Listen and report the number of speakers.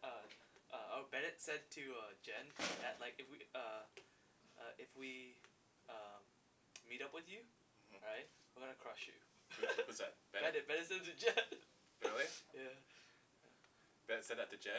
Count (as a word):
two